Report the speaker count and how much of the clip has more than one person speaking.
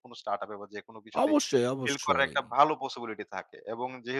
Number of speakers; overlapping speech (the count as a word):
two, about 17%